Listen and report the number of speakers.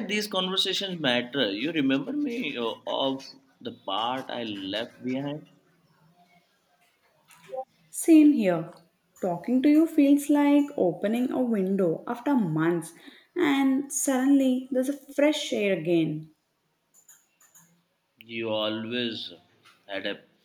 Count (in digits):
2